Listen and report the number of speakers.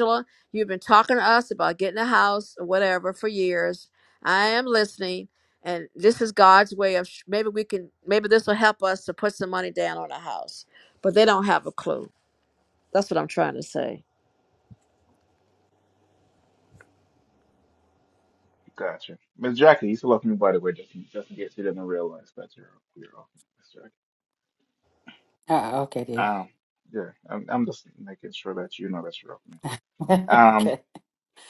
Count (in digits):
3